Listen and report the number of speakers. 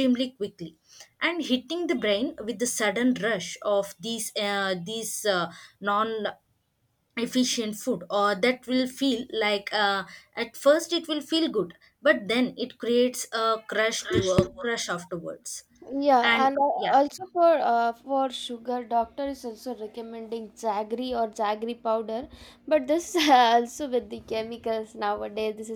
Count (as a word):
two